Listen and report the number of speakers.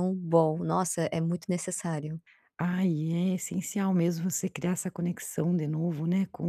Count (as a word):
two